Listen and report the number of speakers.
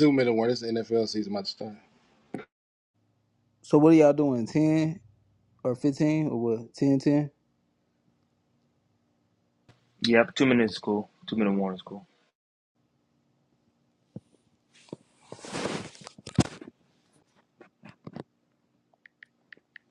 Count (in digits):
3